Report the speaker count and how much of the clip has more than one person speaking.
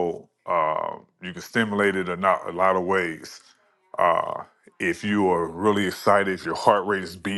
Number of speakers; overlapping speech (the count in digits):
1, no overlap